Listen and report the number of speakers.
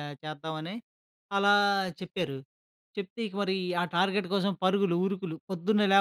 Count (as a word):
one